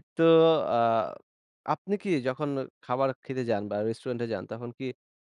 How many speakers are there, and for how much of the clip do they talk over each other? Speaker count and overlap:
1, no overlap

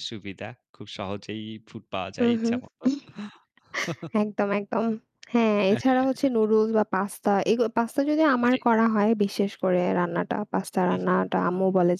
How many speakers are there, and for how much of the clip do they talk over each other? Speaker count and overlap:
2, about 10%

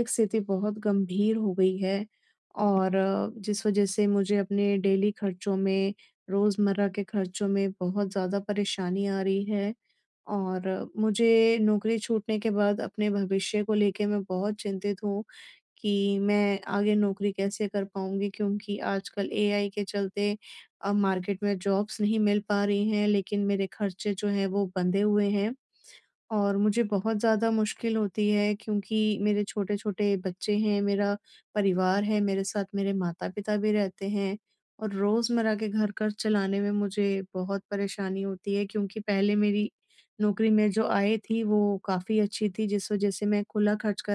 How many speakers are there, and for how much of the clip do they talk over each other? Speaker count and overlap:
1, no overlap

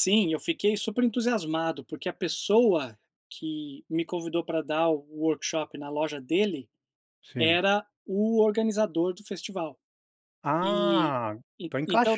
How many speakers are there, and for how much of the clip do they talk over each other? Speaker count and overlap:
2, about 8%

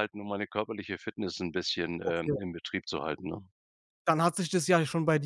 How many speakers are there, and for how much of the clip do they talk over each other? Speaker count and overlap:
2, about 7%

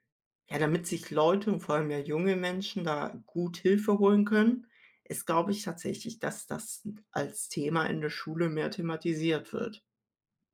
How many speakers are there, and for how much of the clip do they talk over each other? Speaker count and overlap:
1, no overlap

